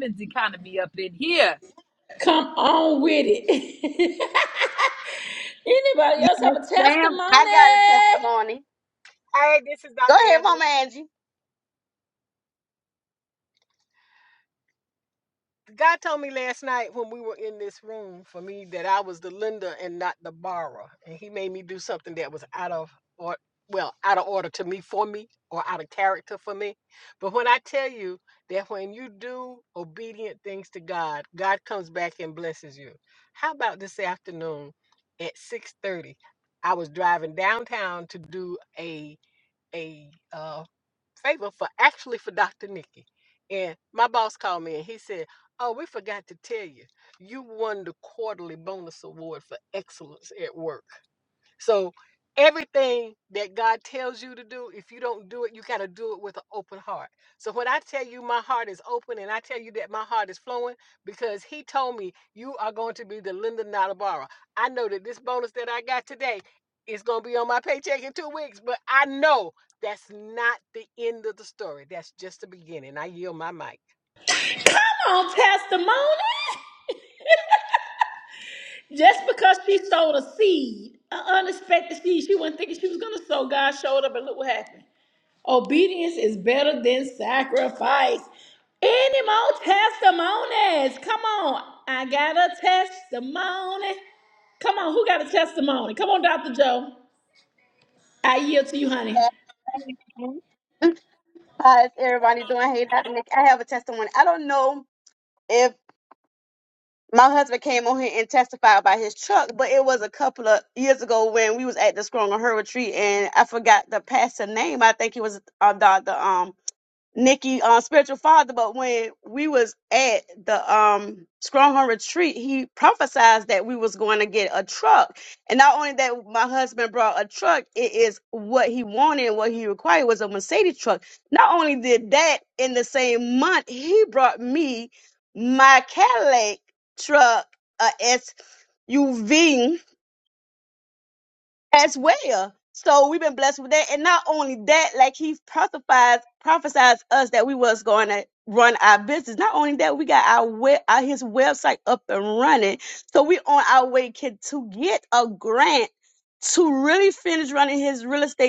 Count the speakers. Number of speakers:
four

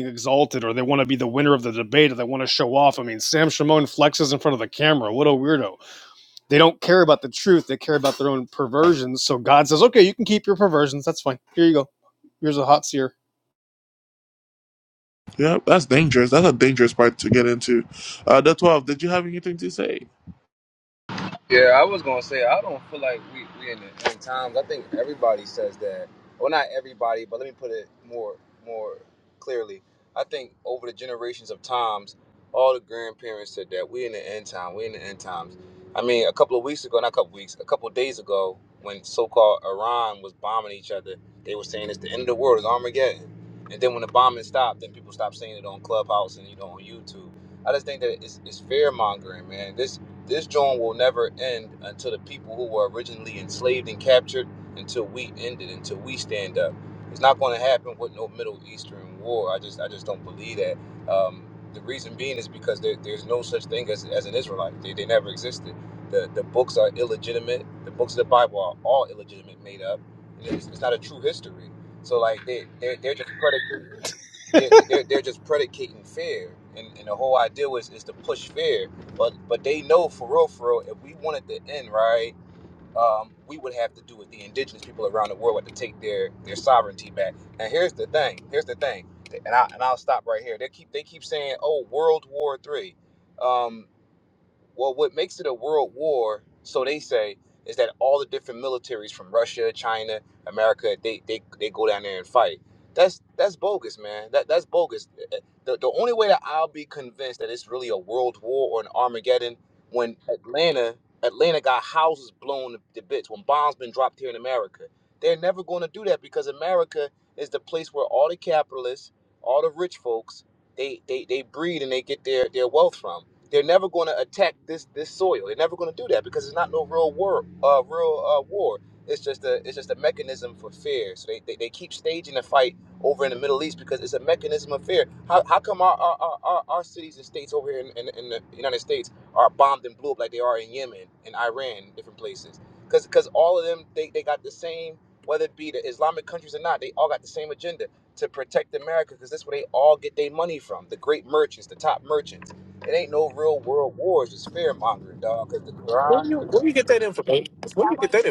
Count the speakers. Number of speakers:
four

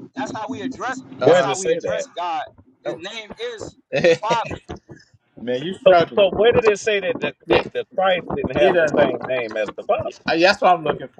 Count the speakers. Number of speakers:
three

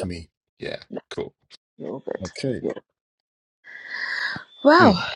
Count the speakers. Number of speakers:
two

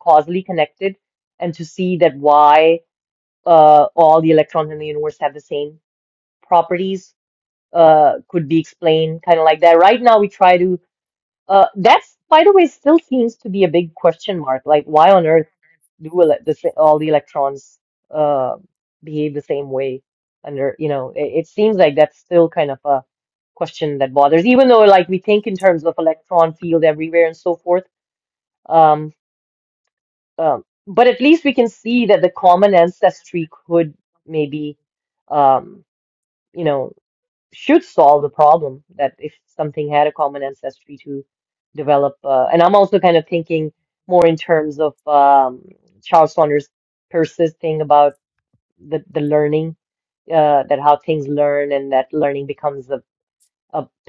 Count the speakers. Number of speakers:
one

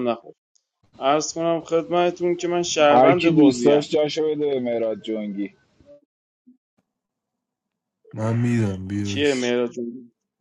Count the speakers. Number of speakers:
three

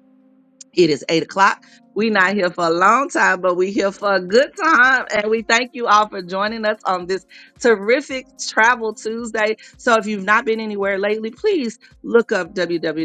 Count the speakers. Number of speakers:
one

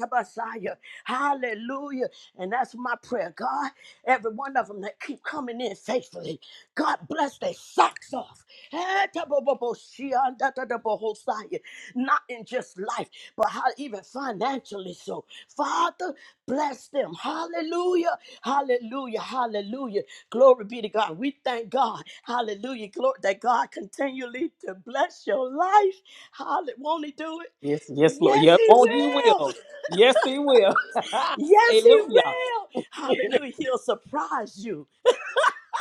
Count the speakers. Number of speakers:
two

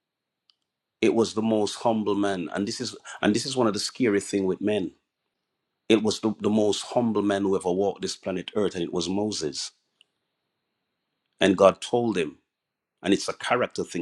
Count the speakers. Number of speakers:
one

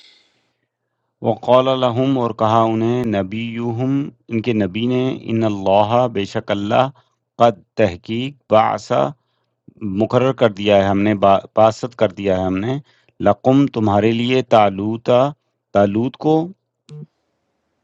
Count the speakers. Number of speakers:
one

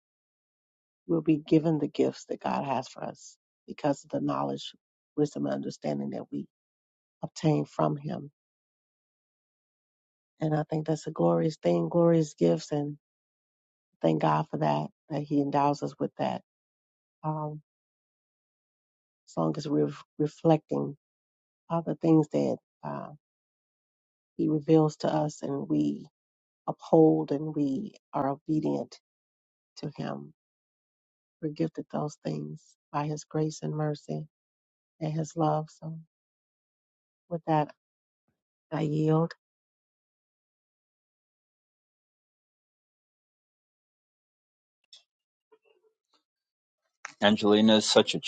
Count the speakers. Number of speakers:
two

